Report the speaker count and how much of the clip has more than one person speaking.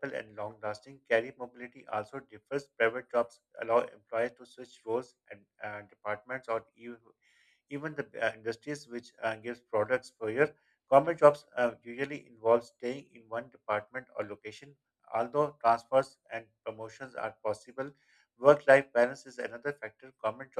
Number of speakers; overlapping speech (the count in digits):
1, no overlap